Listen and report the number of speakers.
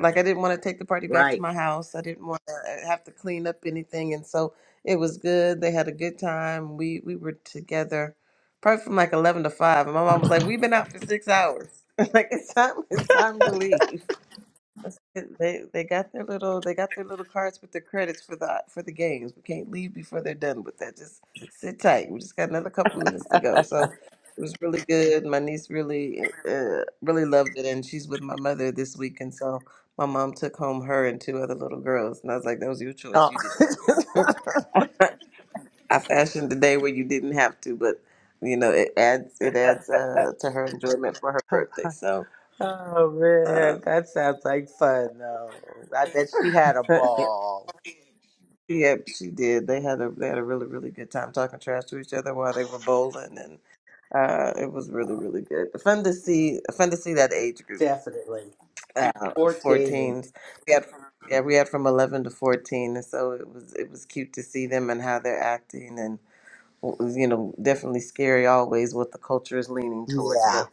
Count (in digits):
2